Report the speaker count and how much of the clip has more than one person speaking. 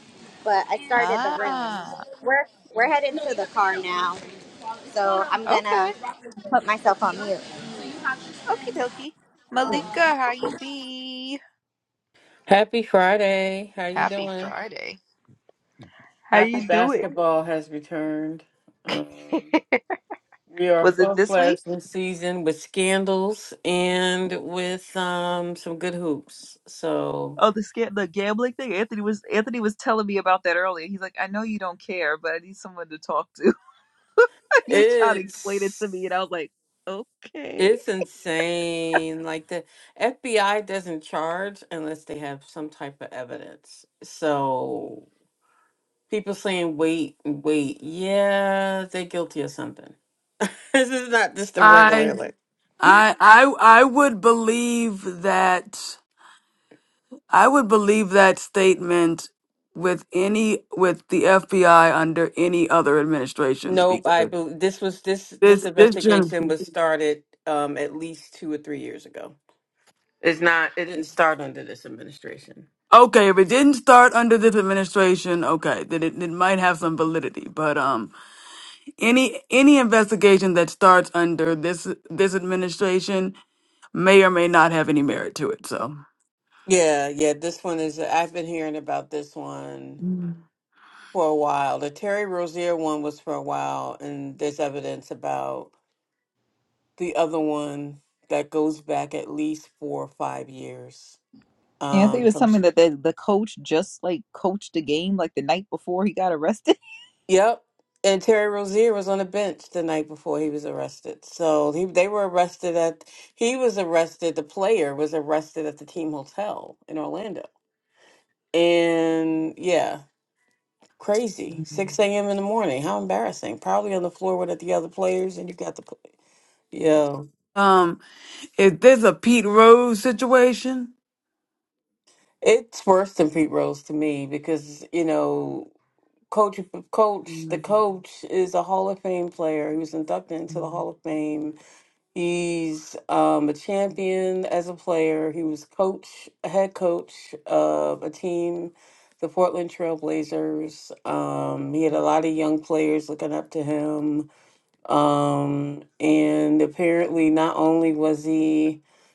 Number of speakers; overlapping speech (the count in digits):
4, about 4%